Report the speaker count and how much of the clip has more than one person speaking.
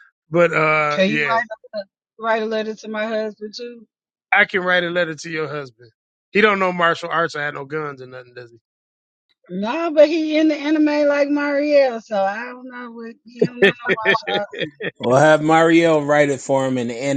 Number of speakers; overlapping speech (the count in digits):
3, about 3%